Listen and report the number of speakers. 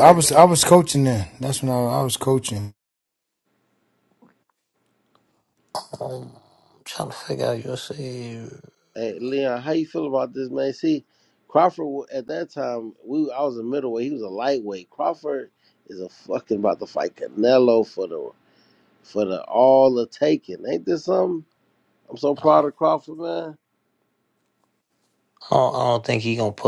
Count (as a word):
three